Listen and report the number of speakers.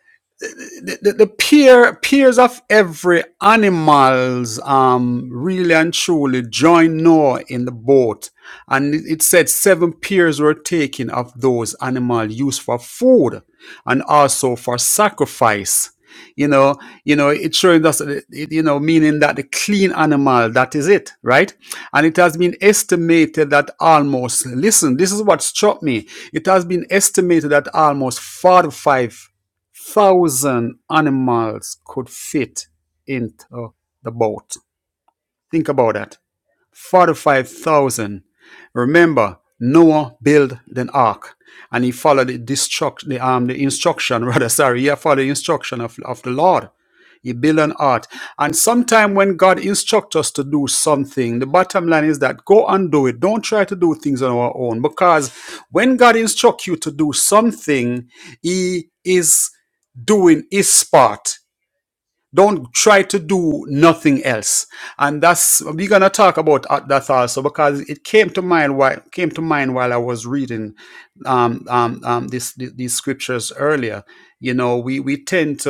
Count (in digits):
1